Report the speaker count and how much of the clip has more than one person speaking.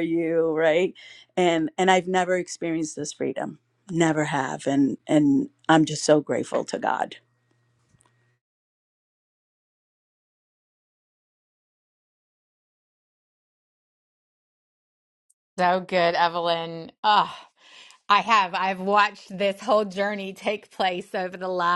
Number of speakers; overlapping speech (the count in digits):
2, no overlap